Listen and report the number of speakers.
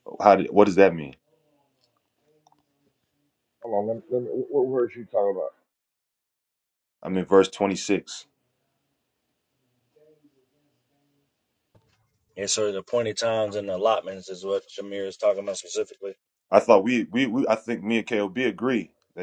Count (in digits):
3